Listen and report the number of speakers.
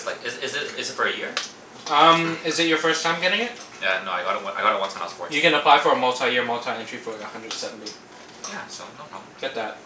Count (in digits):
2